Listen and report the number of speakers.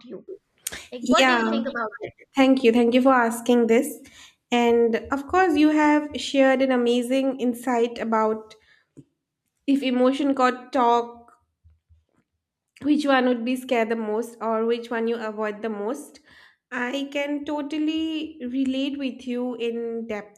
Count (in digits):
2